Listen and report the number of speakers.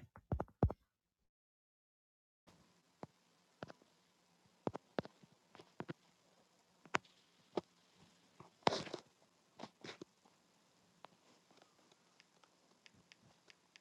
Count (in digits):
0